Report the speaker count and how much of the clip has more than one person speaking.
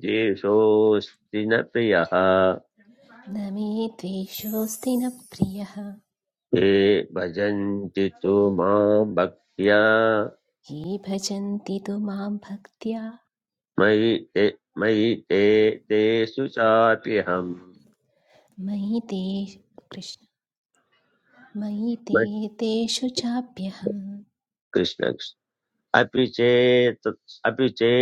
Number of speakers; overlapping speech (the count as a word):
two, under 1%